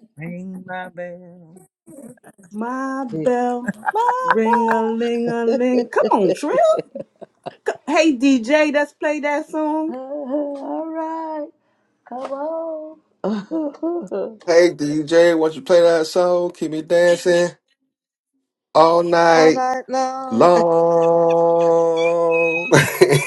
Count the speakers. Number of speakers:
4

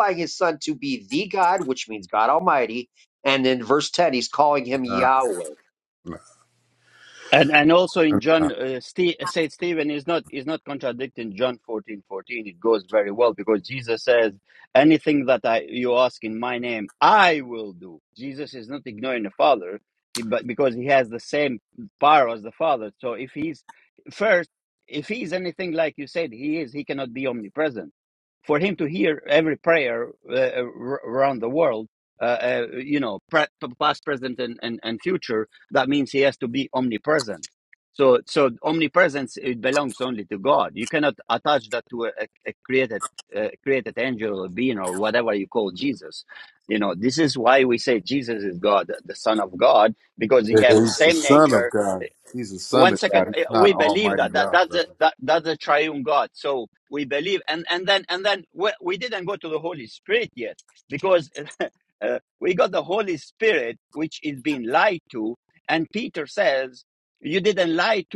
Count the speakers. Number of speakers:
3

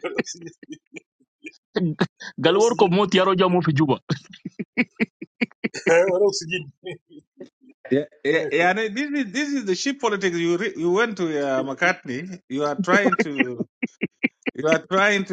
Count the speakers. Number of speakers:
3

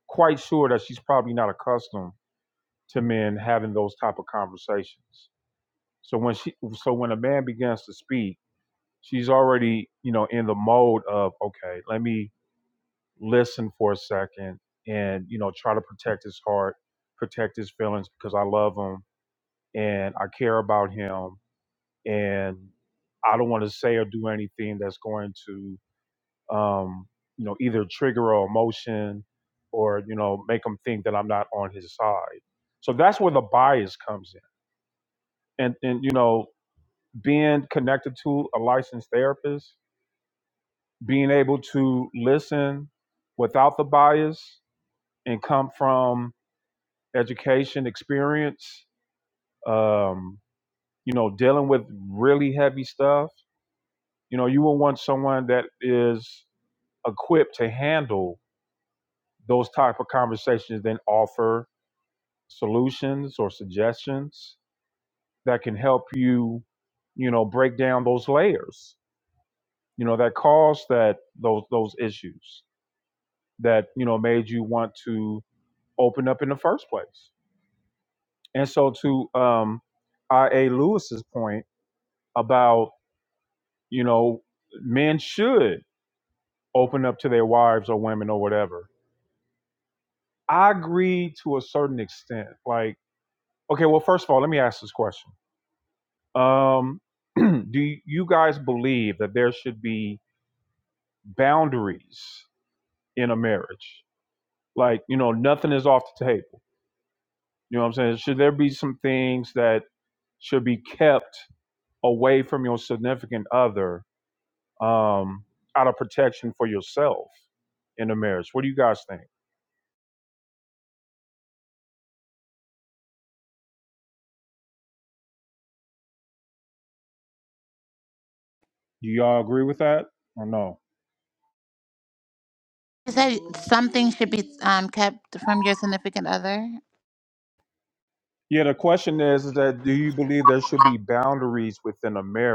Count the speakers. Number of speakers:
2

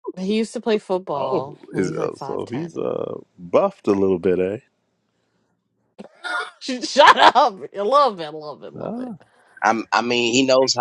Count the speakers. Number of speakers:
3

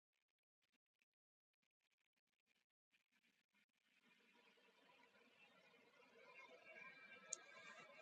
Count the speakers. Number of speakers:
0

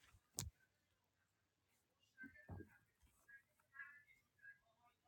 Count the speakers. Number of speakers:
0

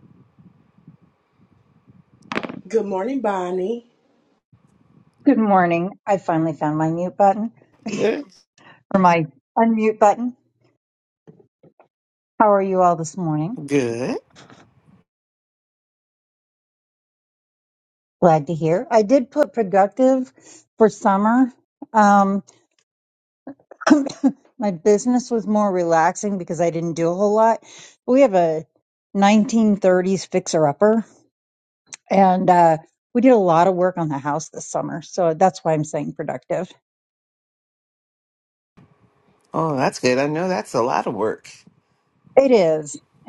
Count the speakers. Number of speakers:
3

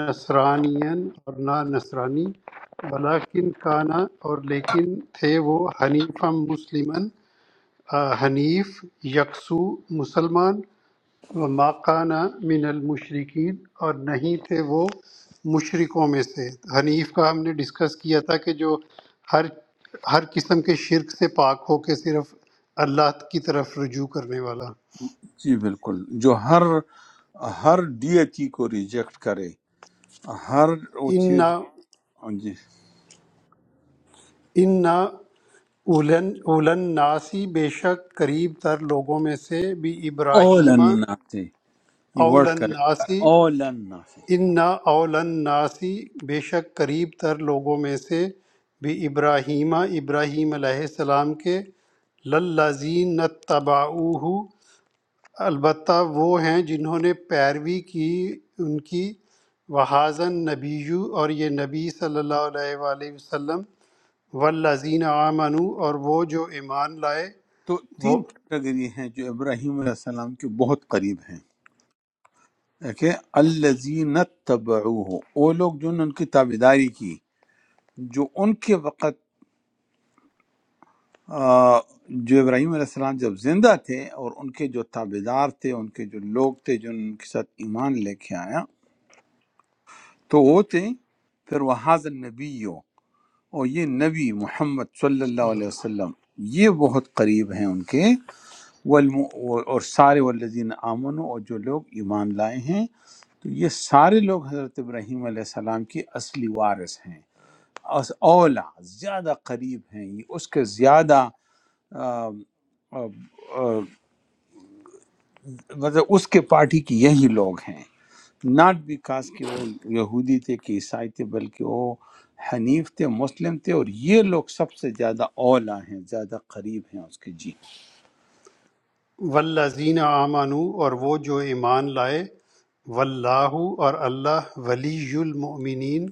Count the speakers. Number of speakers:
2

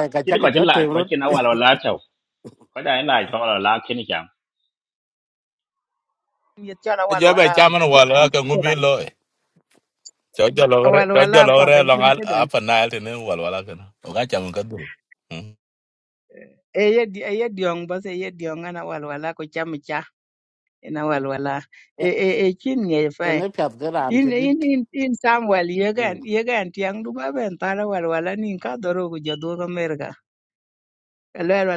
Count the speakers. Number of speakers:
4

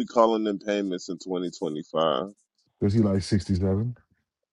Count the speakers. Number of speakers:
2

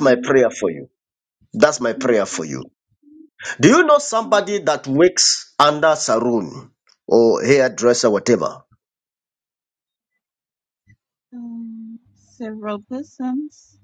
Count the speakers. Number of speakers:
2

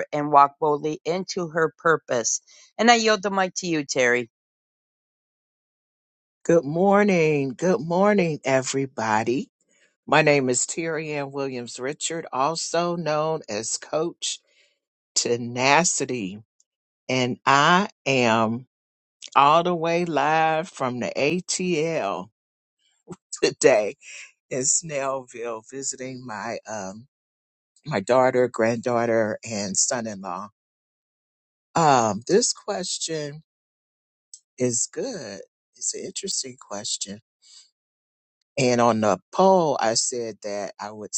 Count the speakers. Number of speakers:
2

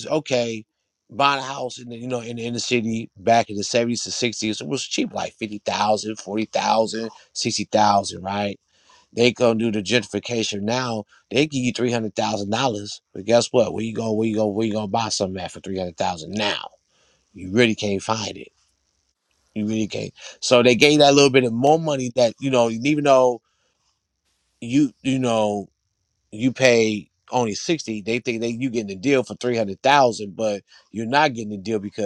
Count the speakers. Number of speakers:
1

